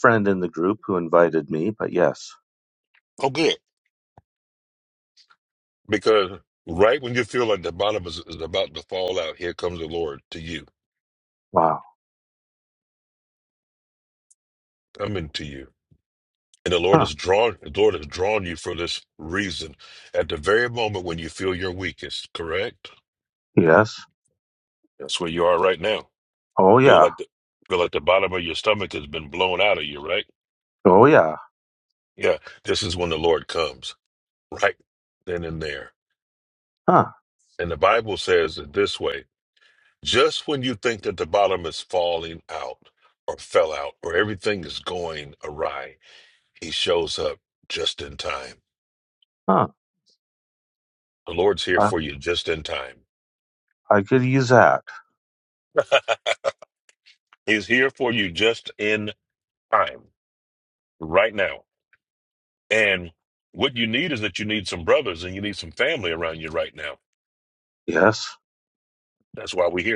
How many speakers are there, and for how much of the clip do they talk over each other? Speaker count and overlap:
two, about 1%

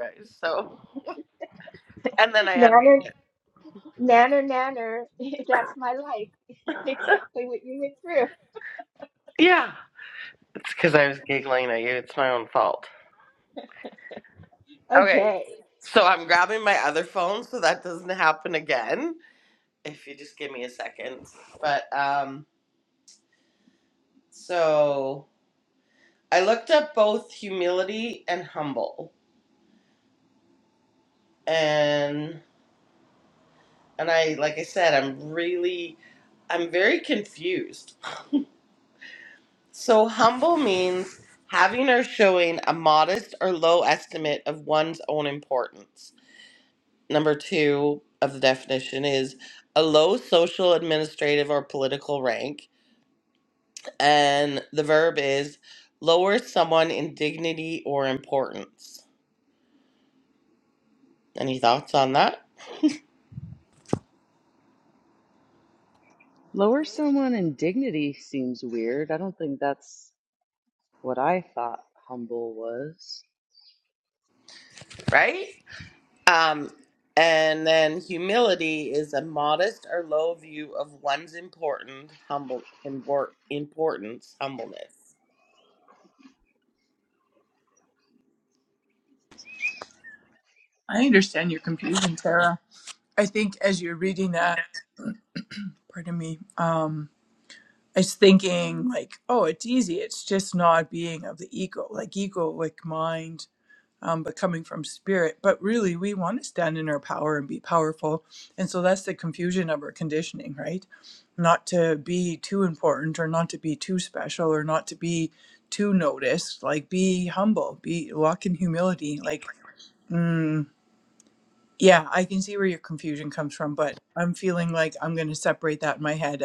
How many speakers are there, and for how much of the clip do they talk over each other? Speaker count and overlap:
four, about 1%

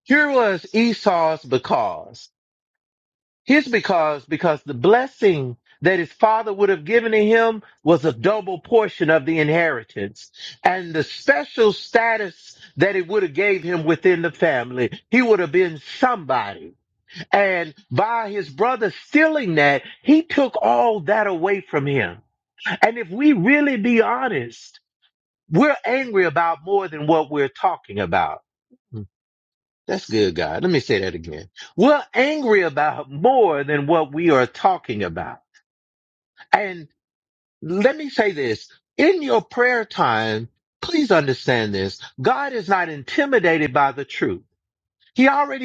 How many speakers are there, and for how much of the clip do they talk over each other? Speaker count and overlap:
one, no overlap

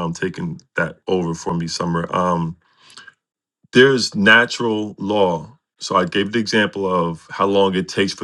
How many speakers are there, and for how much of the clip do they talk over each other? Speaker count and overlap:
one, no overlap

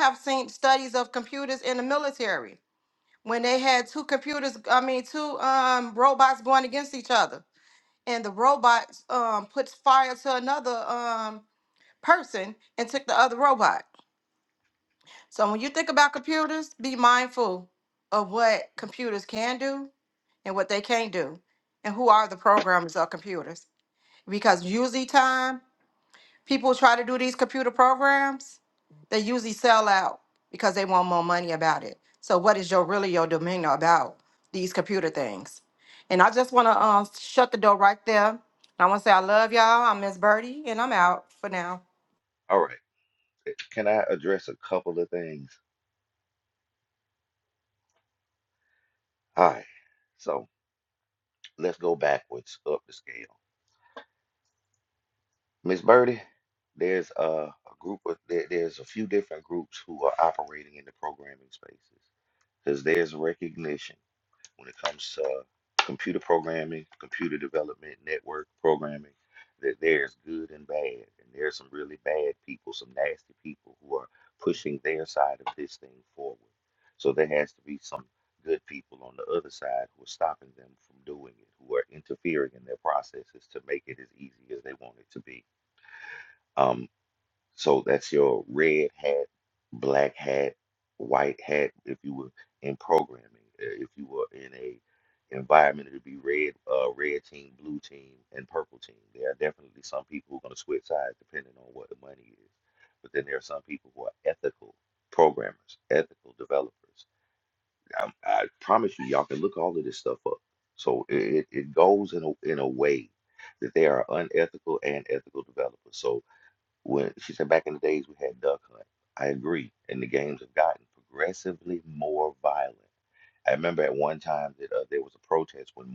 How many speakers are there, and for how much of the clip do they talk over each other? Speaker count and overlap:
two, no overlap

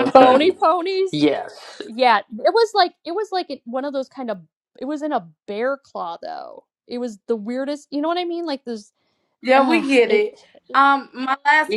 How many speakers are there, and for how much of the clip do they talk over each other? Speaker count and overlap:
three, about 10%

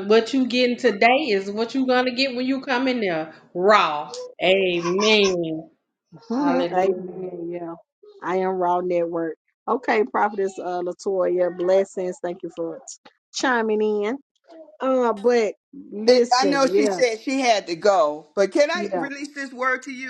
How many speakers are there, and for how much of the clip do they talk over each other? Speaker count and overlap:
three, about 11%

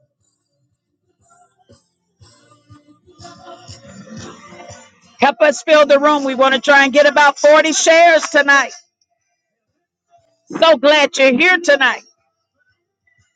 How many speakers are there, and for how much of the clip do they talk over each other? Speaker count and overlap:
one, no overlap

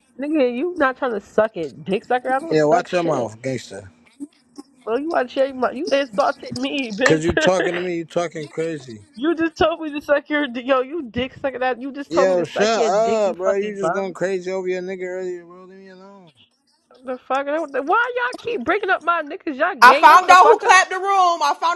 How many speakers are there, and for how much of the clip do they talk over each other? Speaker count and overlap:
three, about 19%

